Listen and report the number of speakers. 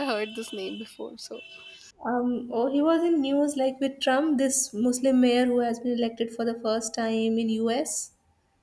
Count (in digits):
2